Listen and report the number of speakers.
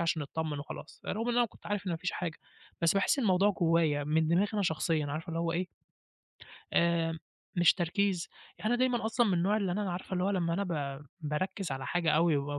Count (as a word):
one